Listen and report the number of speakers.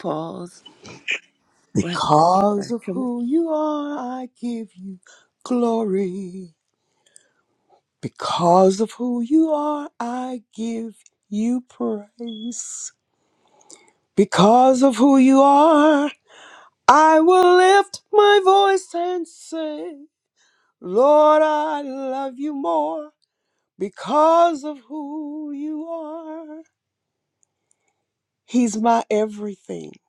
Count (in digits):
2